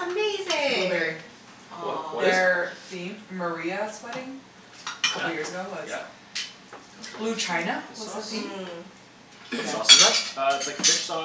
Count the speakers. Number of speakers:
four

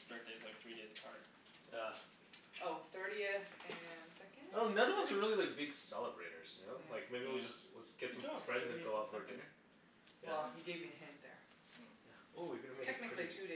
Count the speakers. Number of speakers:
three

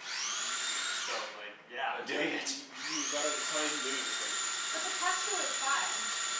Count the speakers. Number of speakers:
three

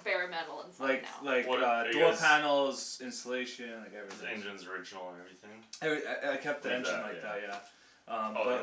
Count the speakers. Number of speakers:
three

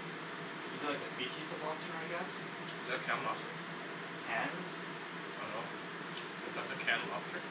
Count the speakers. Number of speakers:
two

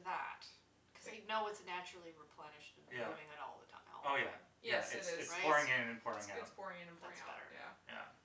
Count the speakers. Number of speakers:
three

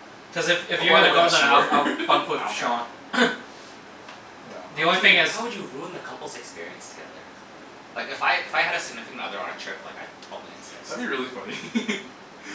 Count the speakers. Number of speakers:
three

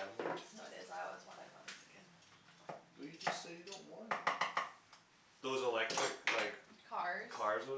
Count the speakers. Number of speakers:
two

